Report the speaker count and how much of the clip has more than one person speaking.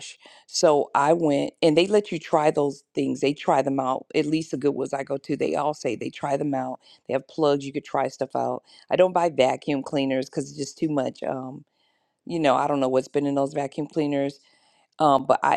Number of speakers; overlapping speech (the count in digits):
1, no overlap